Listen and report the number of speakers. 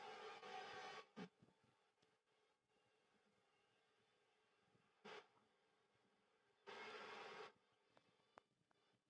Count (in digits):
0